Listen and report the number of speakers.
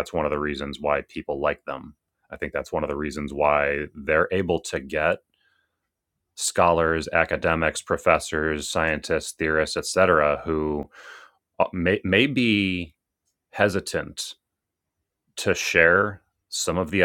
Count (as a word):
one